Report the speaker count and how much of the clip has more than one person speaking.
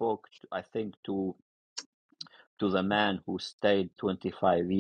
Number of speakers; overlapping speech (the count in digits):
1, no overlap